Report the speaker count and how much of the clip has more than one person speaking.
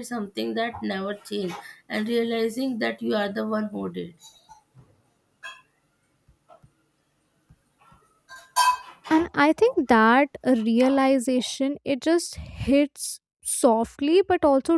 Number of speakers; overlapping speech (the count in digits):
2, no overlap